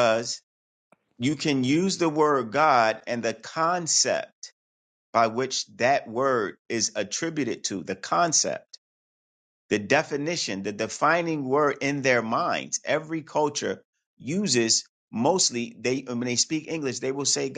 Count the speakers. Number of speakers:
one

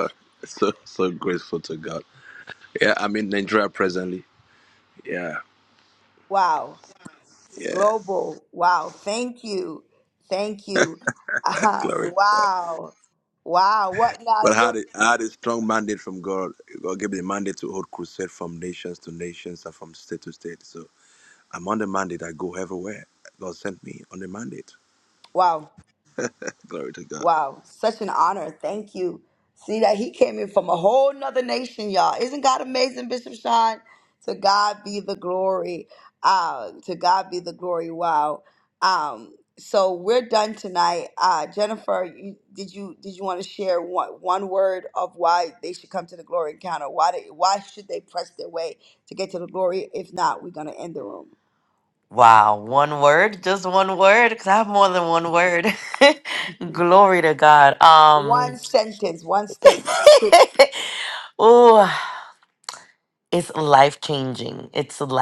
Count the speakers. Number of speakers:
three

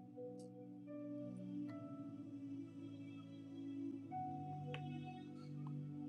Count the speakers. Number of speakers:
zero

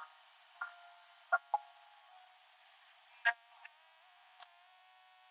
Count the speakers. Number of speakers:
zero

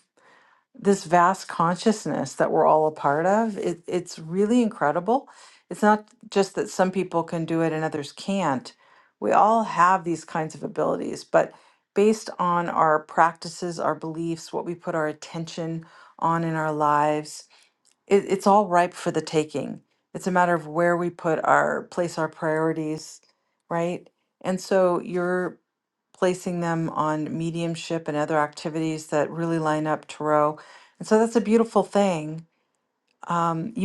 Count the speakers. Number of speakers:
one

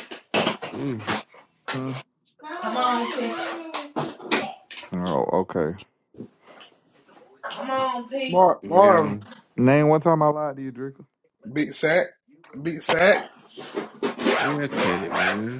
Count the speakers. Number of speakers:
four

